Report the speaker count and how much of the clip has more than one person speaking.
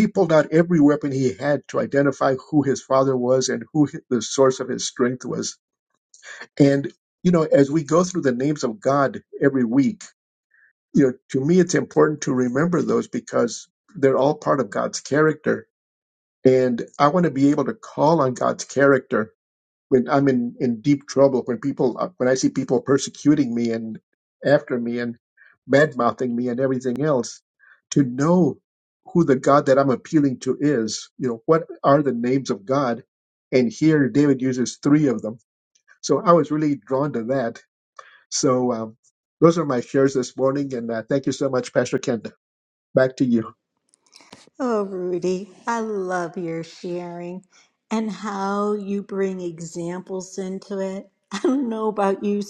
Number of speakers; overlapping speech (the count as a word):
two, no overlap